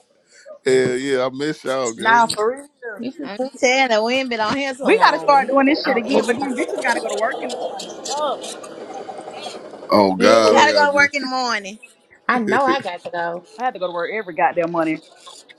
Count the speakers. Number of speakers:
4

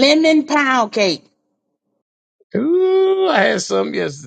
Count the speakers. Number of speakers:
2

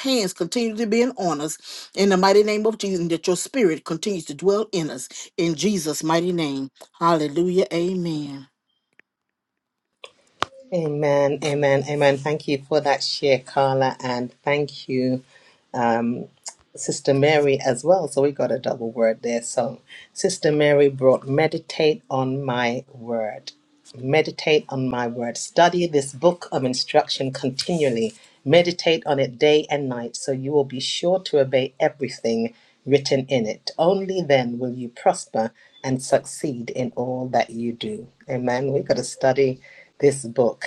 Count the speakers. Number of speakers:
2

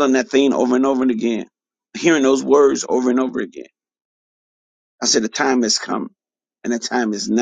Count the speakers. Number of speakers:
1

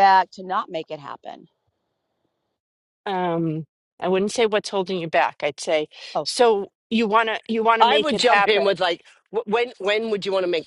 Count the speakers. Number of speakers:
3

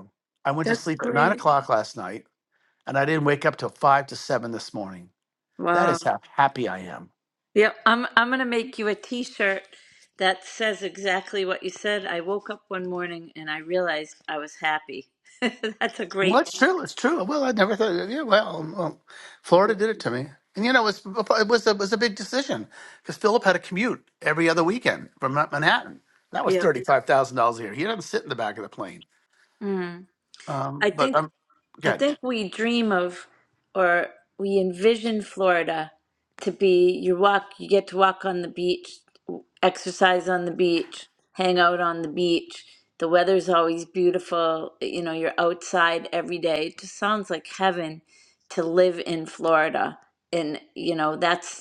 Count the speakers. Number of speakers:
2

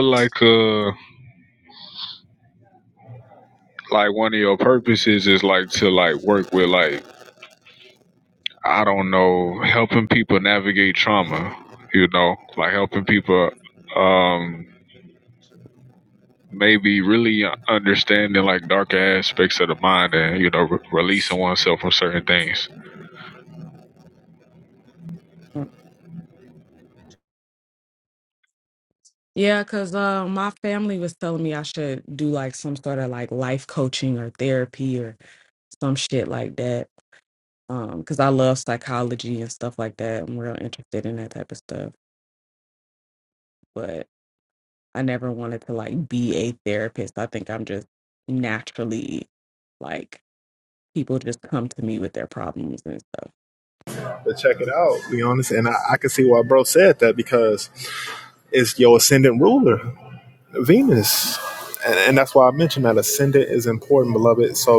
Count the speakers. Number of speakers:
3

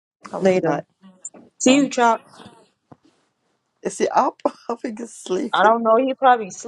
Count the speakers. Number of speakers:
2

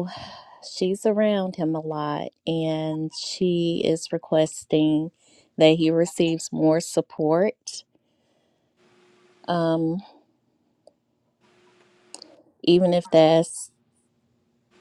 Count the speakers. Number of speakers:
1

